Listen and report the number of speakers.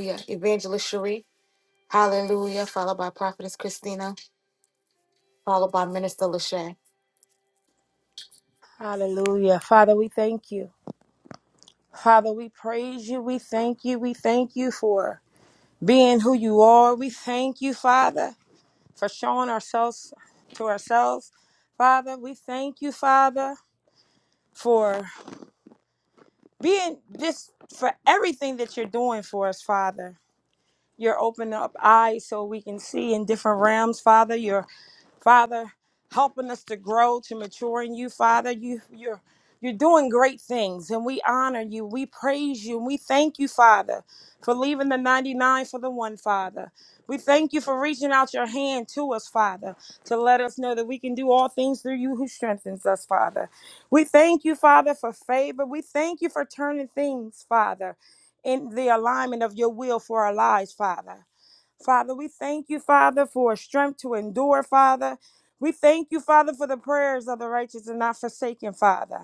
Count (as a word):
two